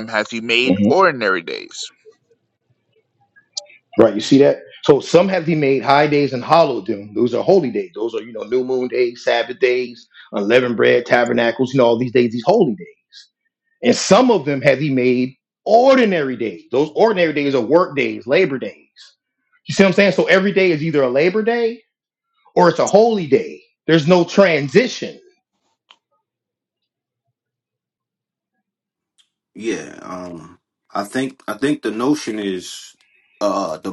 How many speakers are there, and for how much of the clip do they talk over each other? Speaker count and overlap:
3, about 1%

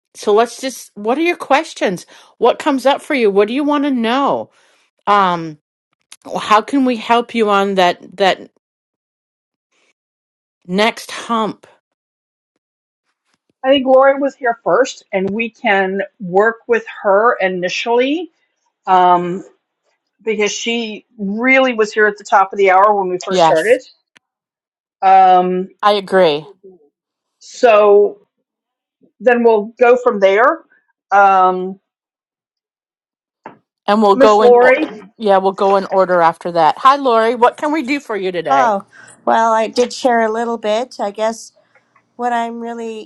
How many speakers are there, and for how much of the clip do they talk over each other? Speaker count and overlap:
3, about 3%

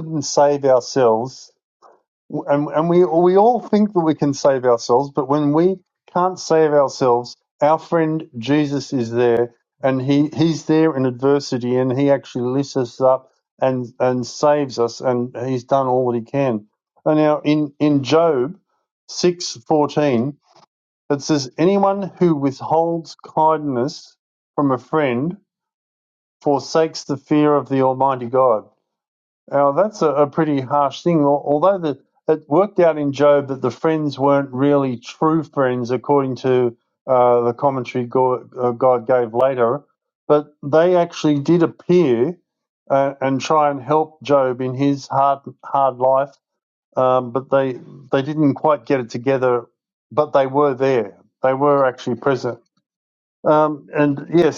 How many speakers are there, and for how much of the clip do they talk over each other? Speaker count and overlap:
1, no overlap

